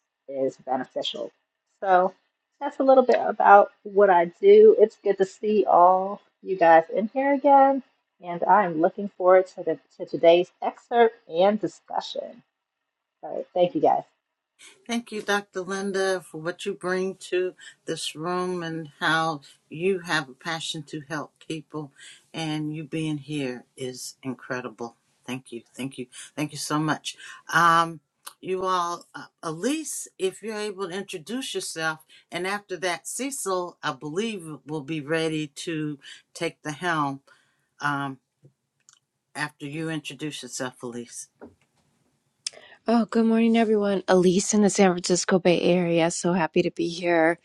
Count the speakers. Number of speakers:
3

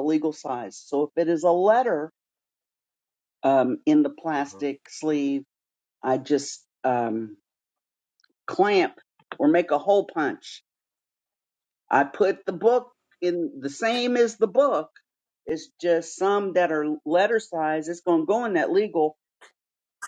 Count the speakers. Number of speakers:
1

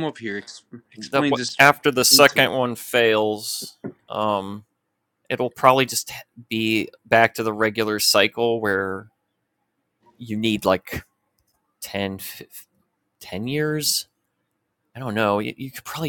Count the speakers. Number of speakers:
2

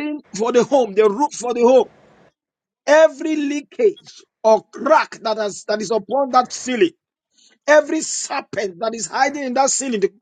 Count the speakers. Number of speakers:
1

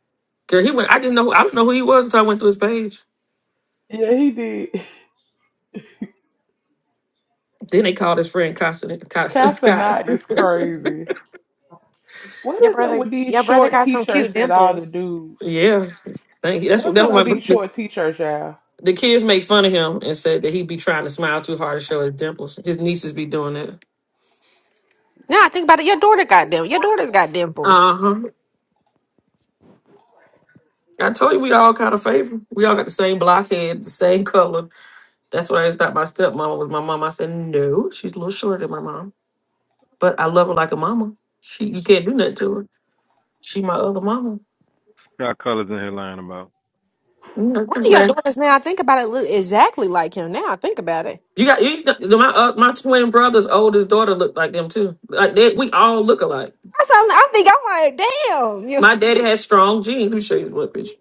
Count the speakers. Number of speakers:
4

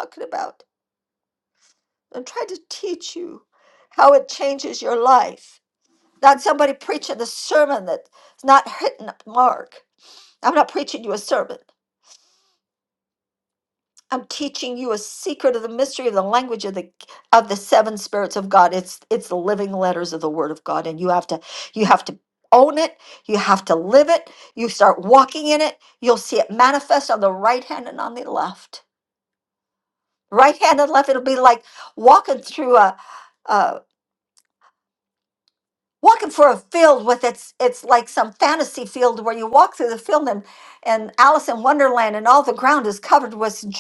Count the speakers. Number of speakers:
1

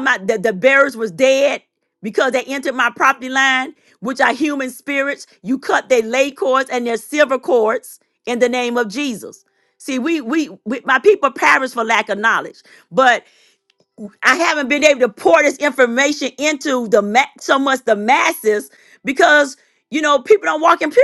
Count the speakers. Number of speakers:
1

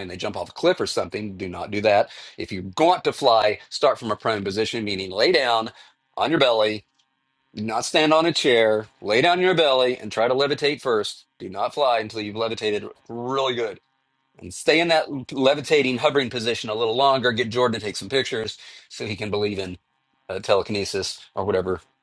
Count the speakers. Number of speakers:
1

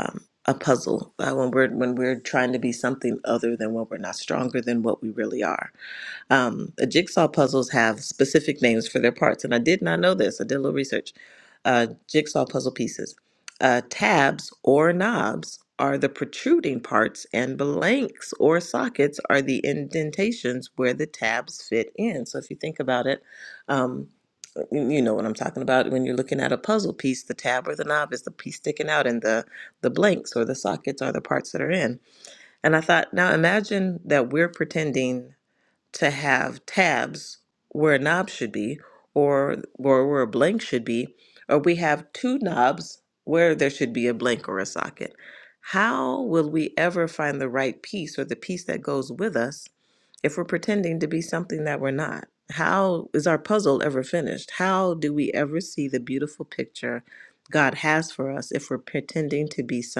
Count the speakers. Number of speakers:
1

